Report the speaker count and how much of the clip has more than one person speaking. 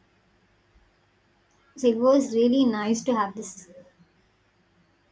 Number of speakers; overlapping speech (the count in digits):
1, no overlap